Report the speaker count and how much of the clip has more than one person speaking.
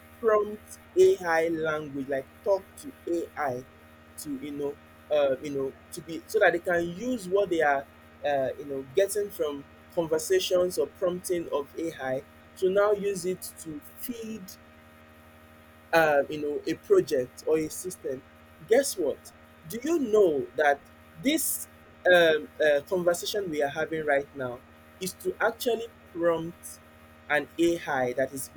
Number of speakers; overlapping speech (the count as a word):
one, no overlap